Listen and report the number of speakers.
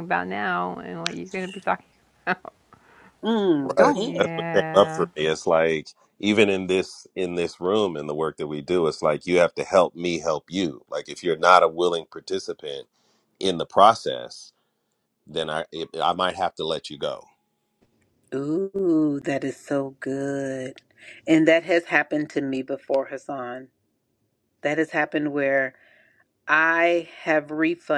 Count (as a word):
three